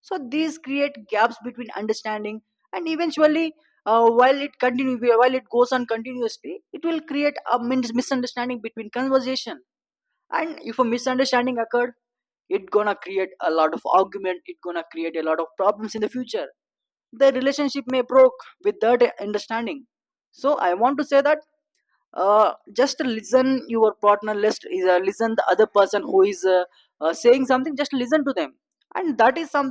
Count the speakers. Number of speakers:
1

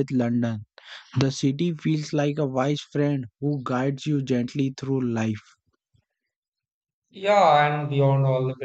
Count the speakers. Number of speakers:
2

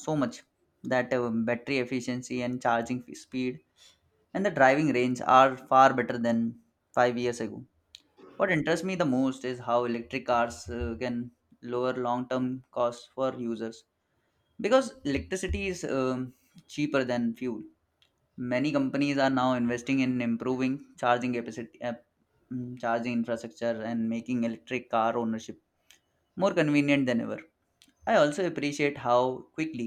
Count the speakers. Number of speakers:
1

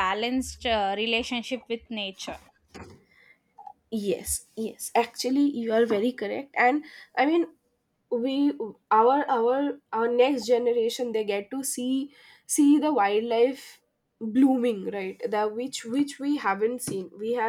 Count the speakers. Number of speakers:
2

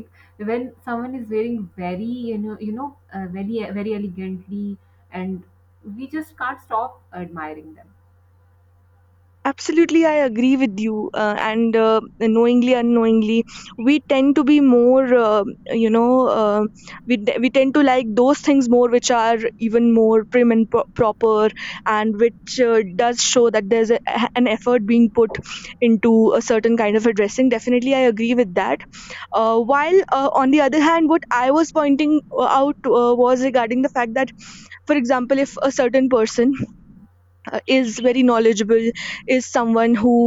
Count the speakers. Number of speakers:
2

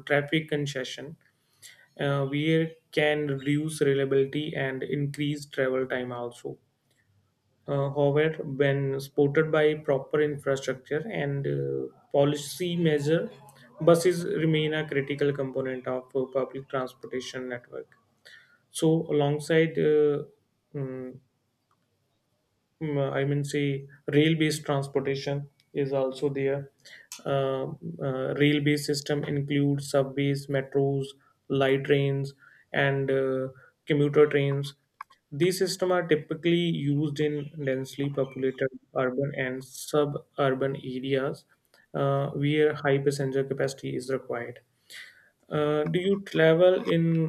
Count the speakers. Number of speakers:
1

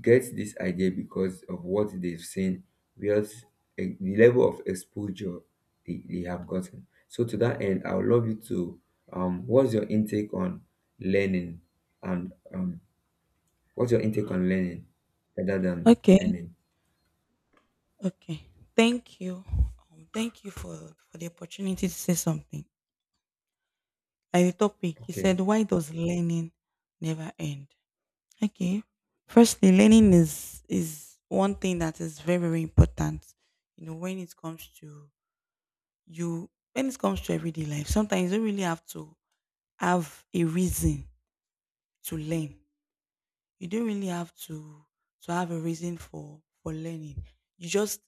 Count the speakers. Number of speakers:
2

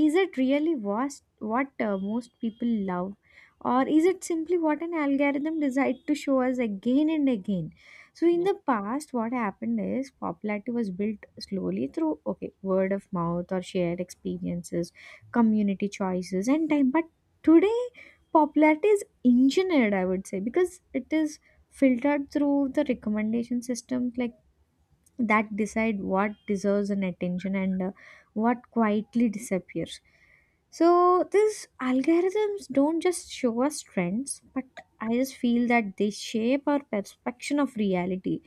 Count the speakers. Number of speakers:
1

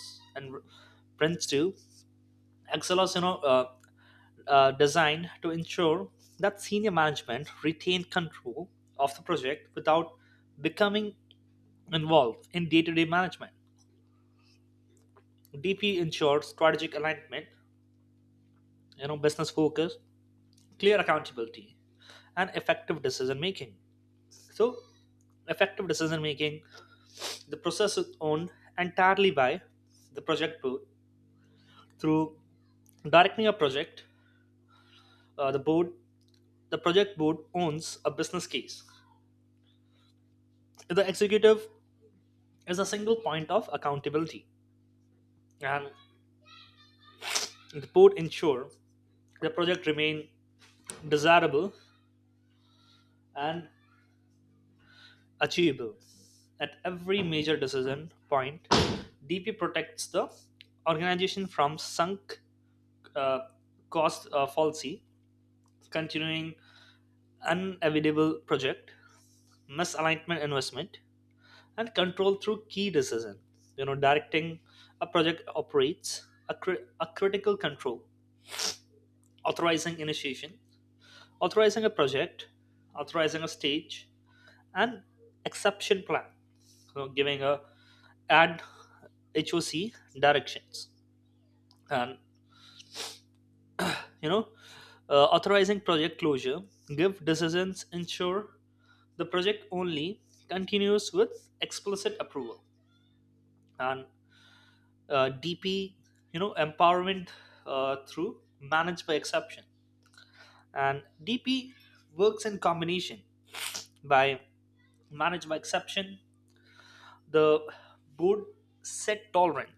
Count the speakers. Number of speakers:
1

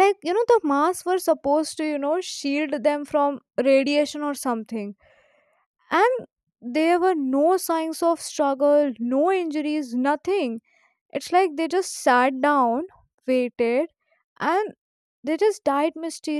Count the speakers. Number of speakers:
1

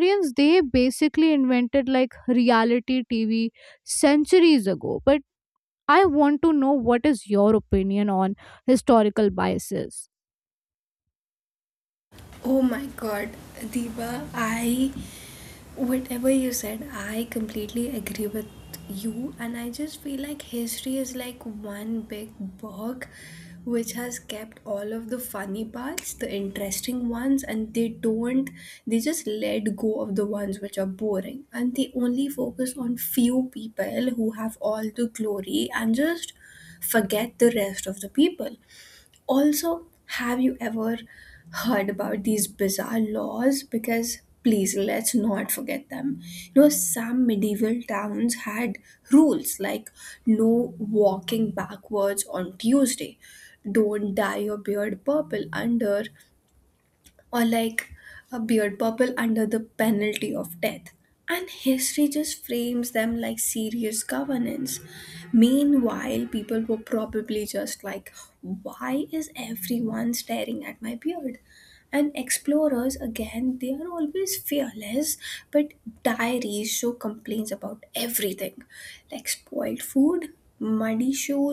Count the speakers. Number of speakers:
2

